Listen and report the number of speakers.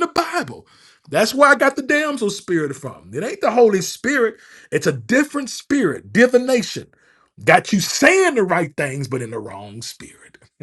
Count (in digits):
1